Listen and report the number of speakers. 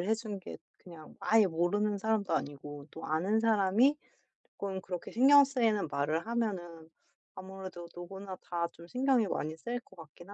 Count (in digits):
1